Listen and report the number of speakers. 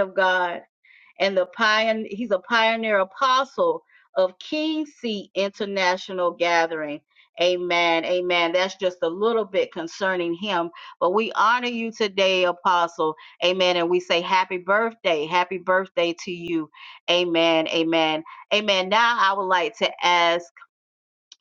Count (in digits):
1